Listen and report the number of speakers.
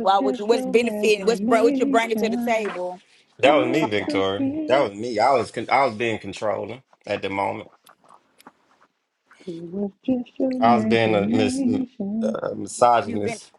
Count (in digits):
3